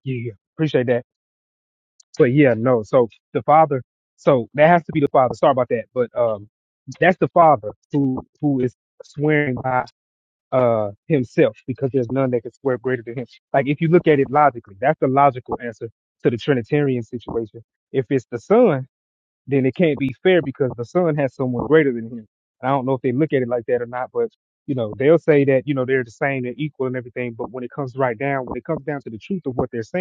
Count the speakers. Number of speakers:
one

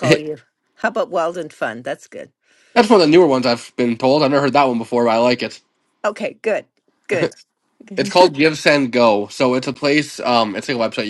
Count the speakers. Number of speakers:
two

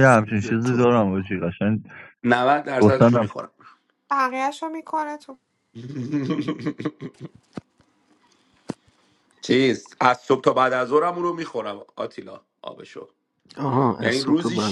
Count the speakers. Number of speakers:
four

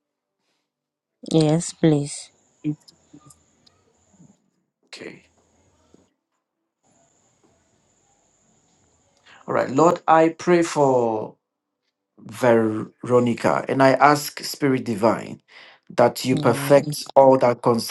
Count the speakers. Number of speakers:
two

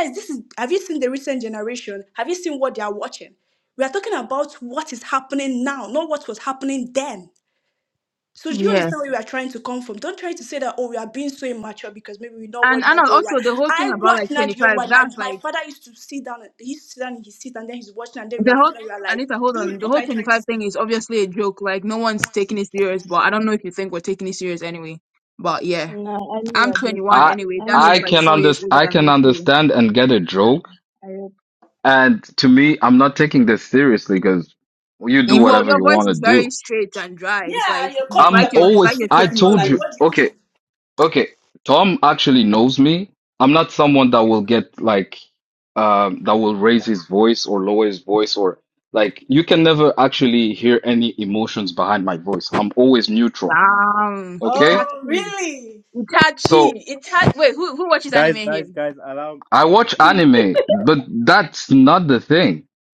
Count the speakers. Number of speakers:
five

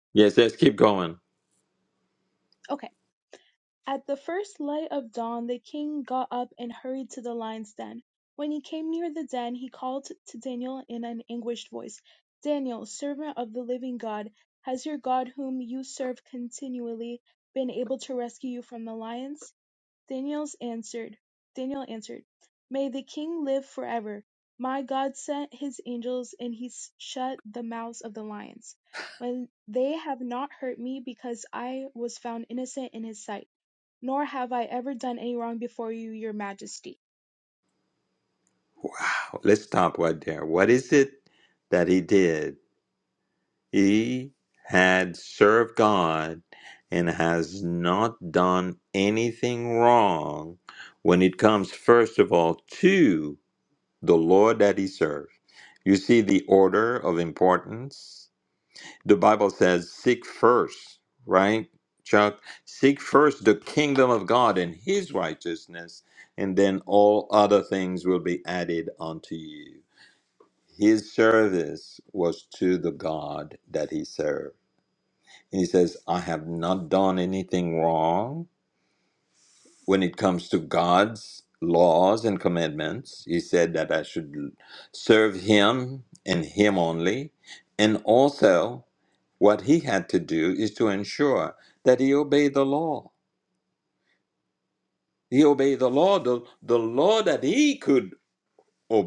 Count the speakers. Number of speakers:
two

